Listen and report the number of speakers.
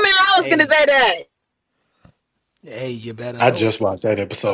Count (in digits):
3